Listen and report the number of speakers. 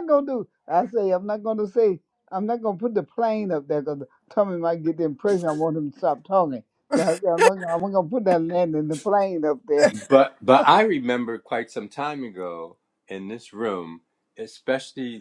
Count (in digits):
2